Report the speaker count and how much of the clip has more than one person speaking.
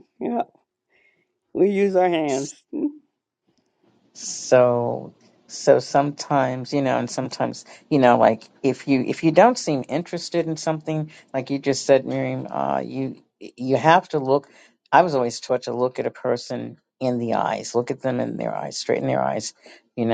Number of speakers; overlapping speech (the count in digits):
2, no overlap